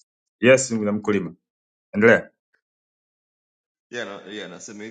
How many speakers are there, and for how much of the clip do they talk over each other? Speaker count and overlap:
2, no overlap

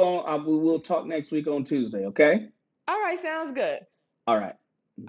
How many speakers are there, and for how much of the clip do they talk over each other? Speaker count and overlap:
2, no overlap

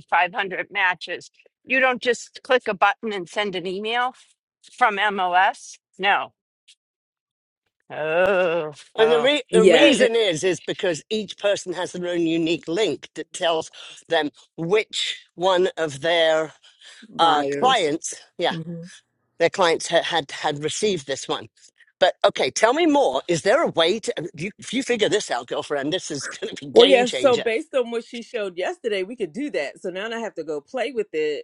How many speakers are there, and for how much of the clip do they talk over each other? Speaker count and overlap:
3, about 7%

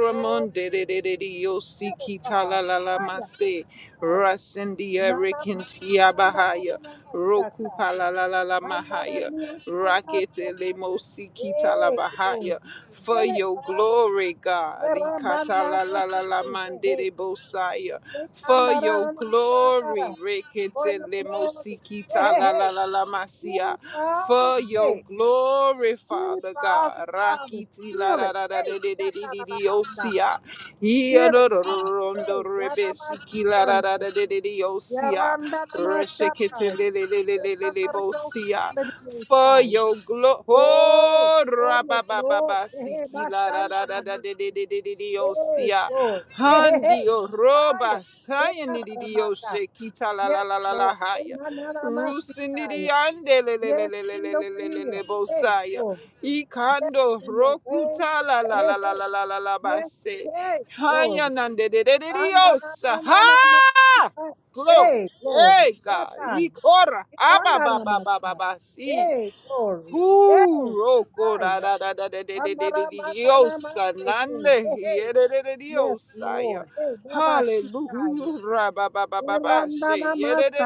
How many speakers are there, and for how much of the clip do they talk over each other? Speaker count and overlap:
2, about 54%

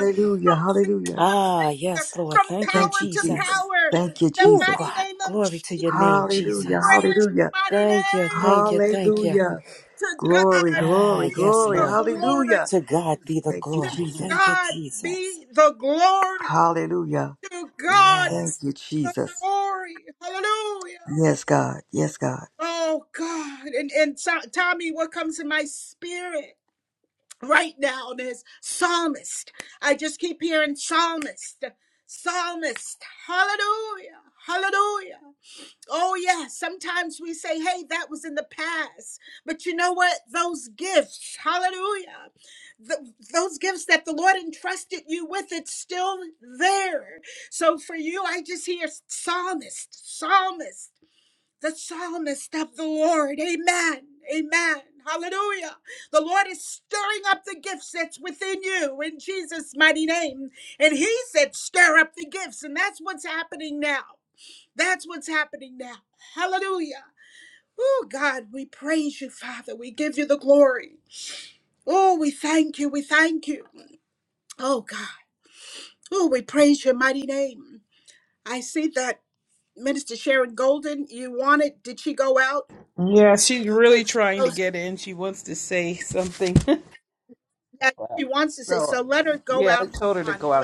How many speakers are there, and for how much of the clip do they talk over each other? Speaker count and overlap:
4, about 16%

